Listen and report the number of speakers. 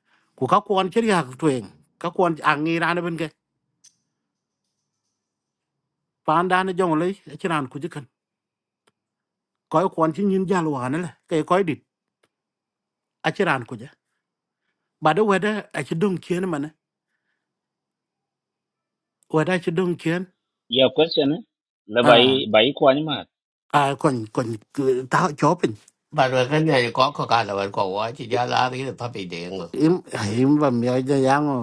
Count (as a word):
three